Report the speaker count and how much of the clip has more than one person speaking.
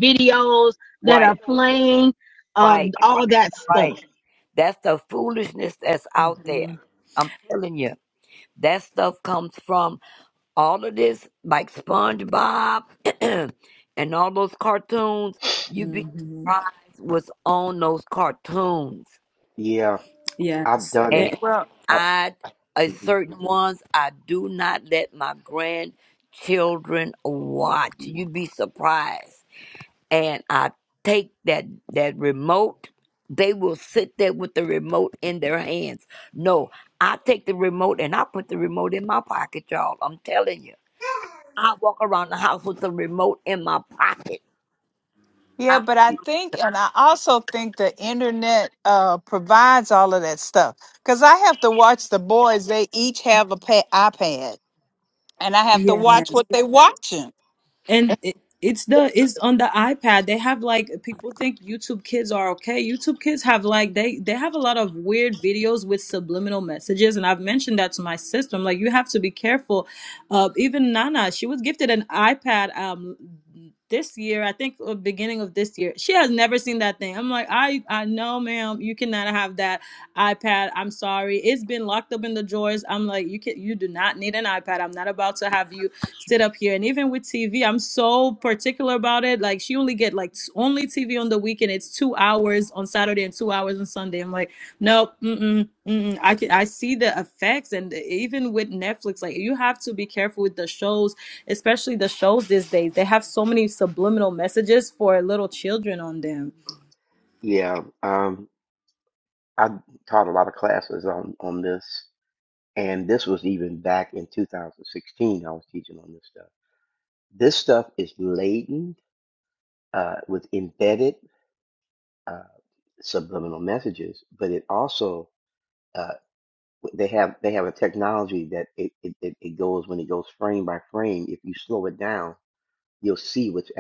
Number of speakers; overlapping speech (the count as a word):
five, about 3%